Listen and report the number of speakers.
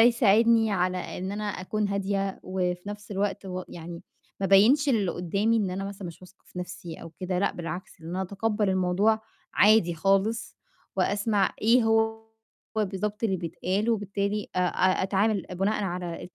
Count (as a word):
one